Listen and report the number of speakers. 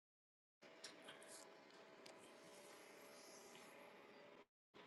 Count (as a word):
zero